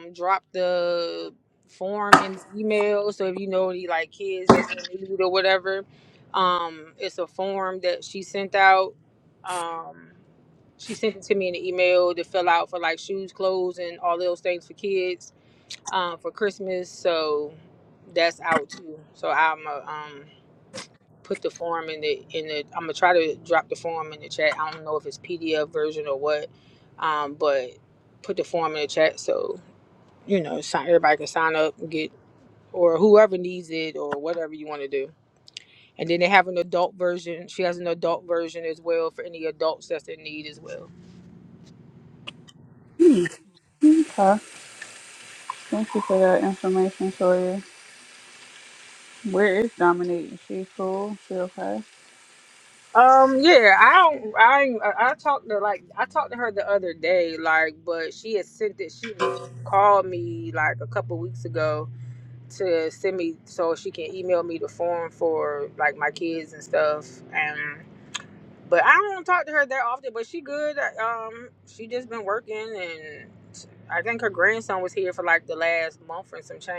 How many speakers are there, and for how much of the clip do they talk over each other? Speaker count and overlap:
2, no overlap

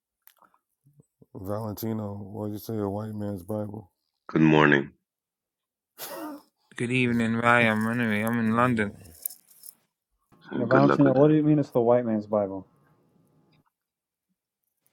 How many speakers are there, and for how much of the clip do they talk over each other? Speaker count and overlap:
4, about 9%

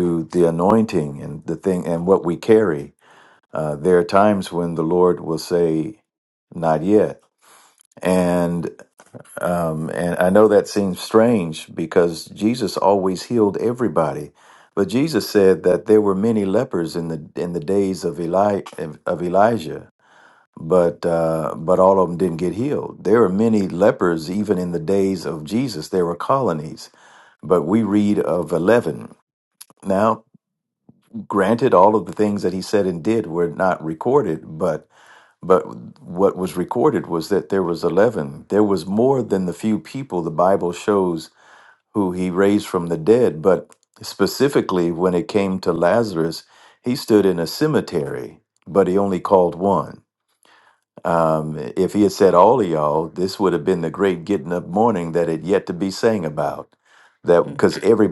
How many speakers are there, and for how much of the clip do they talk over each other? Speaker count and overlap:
1, no overlap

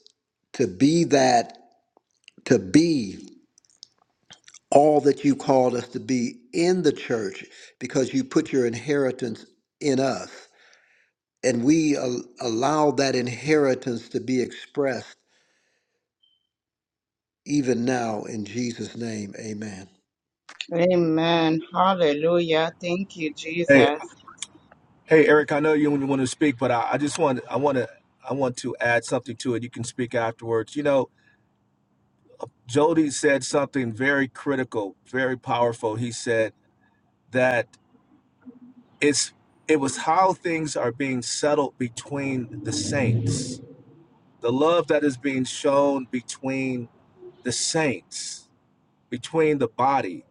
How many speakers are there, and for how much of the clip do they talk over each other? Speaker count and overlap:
3, under 1%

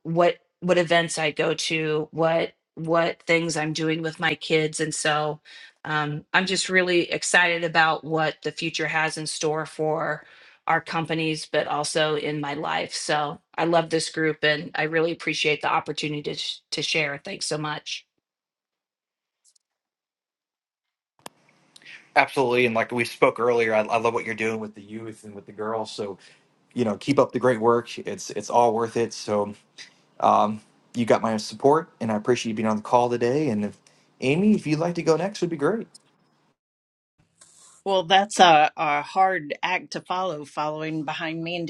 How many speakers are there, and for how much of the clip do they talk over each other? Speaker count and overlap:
3, no overlap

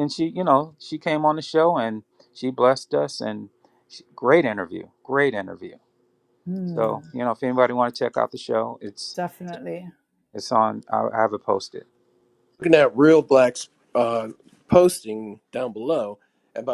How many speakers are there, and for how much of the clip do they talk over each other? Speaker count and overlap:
3, about 2%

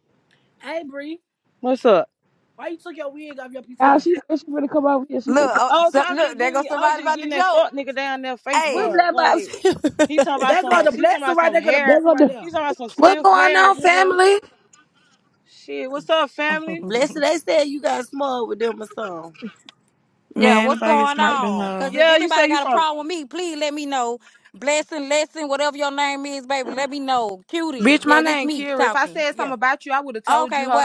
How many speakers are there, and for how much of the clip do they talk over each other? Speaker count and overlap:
6, about 37%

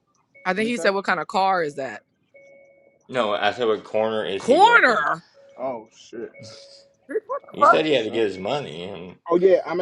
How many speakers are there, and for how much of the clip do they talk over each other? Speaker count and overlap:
3, about 17%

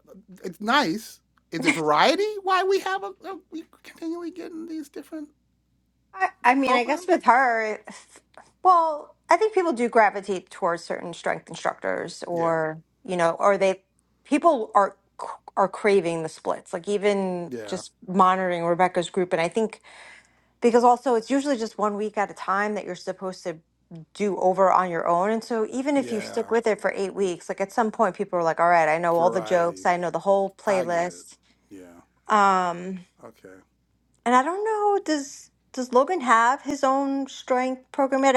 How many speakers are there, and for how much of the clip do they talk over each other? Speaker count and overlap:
2, about 7%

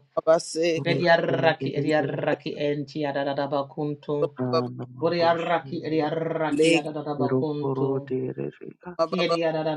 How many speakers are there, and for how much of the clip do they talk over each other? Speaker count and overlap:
3, about 41%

